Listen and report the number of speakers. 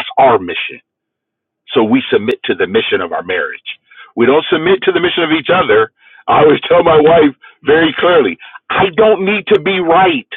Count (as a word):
one